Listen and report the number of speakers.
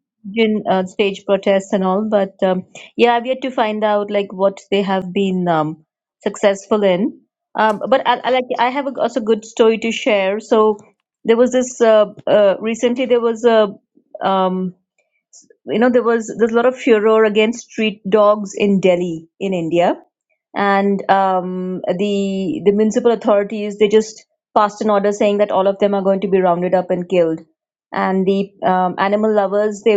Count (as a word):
one